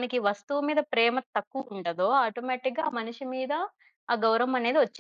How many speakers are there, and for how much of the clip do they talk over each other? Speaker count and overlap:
one, no overlap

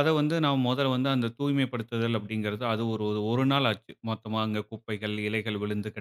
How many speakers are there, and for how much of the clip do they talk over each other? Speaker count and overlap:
one, no overlap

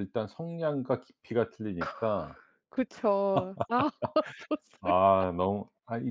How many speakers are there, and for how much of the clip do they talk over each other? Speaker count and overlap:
two, about 7%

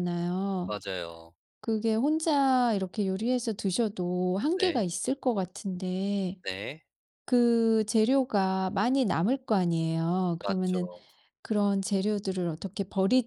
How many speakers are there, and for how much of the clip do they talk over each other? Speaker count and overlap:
two, about 5%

